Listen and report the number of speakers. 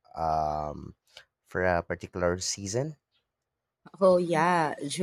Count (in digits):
2